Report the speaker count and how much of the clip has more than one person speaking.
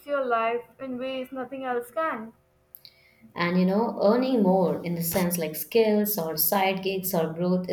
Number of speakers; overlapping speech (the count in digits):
2, no overlap